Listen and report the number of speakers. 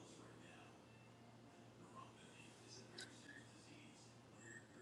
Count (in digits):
0